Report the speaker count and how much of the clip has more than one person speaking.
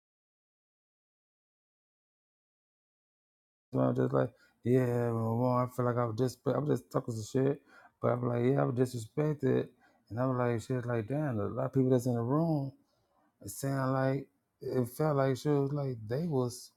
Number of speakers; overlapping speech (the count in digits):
1, no overlap